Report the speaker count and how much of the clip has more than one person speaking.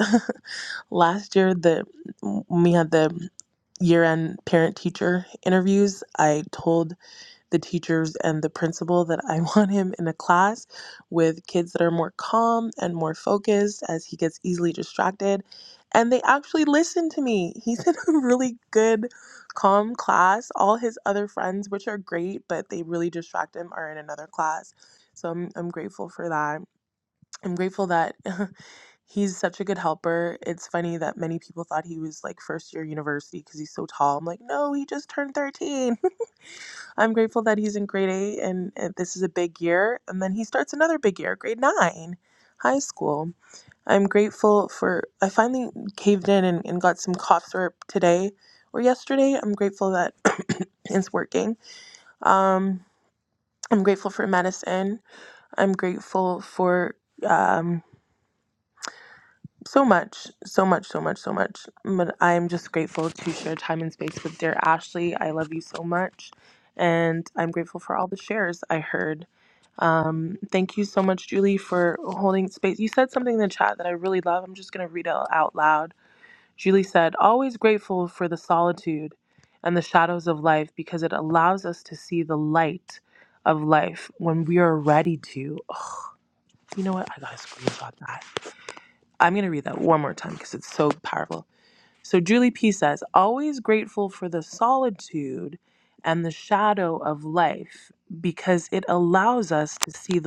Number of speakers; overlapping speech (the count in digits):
1, no overlap